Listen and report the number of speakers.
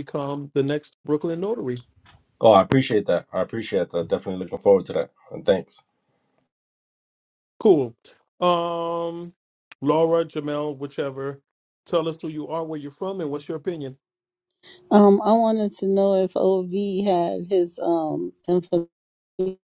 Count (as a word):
three